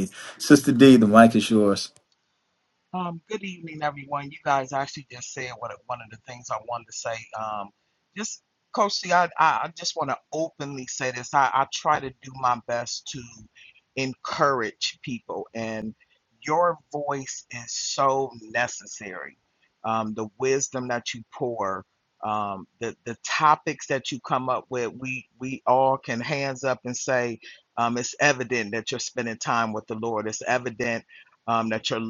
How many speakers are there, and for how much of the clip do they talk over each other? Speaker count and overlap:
2, no overlap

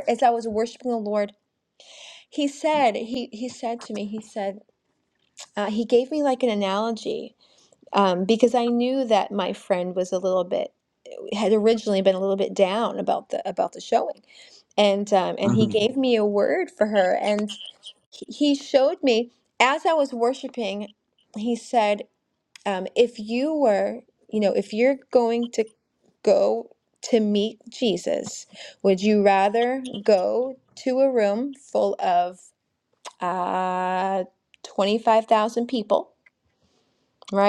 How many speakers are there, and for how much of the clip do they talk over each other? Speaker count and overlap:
1, no overlap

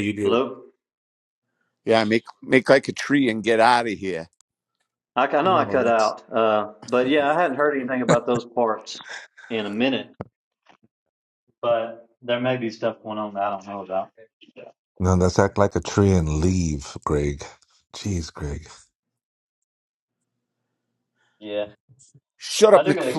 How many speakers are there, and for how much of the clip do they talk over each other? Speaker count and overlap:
3, about 3%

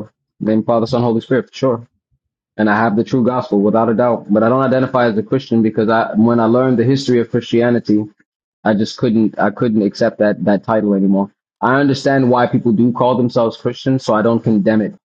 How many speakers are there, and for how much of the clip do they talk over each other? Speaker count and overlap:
1, no overlap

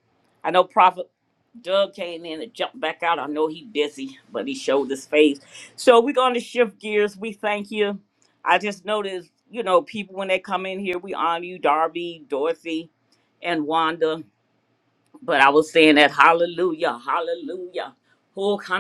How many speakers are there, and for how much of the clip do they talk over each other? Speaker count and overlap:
1, no overlap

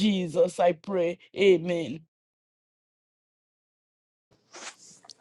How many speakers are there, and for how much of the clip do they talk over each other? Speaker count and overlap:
1, no overlap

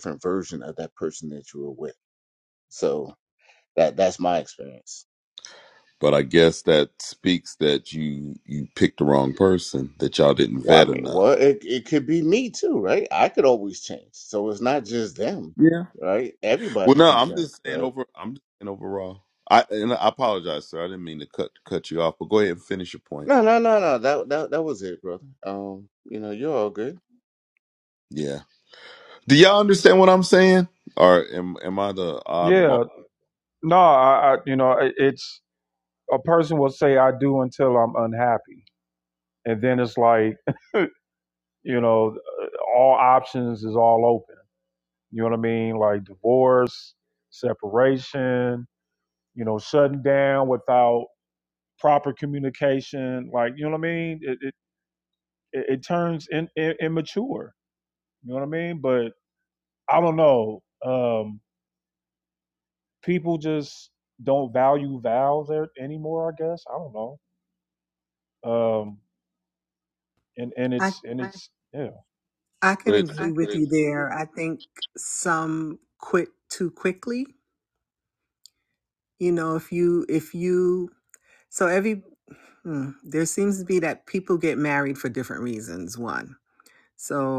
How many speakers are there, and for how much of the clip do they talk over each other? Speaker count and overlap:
4, about 3%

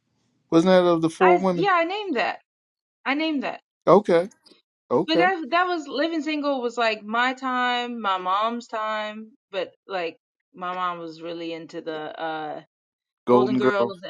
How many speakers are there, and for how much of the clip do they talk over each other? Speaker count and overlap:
2, about 9%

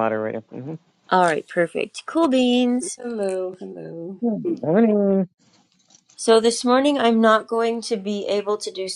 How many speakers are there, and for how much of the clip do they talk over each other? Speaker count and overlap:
3, no overlap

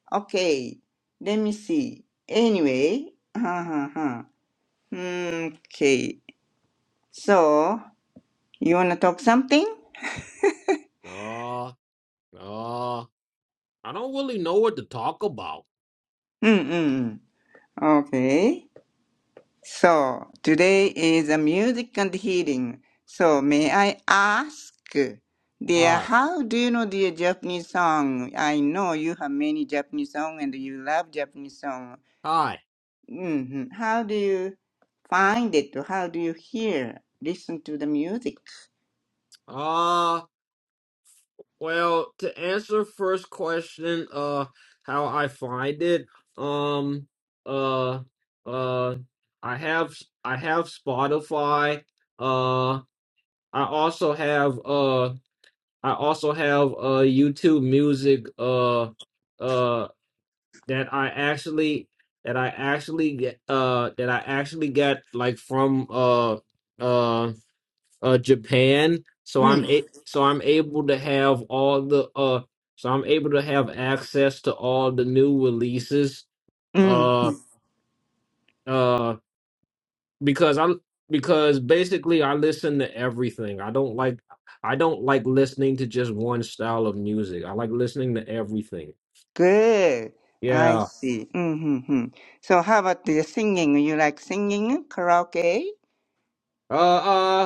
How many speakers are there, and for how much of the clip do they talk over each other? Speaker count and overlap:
2, about 1%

